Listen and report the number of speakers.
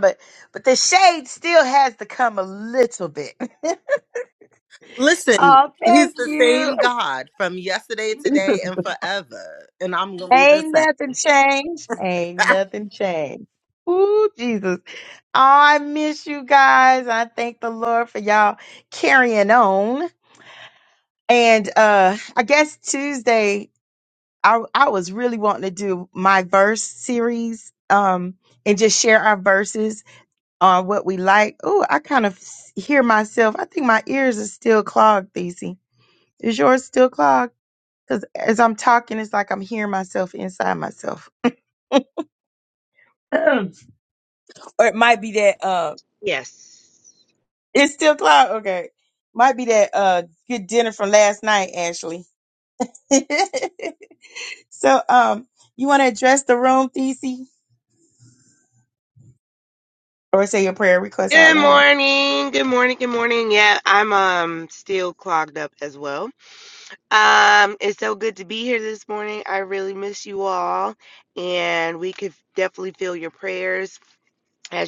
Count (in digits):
3